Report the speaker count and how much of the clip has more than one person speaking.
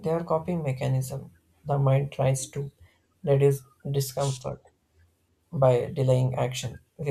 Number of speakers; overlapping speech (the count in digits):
1, no overlap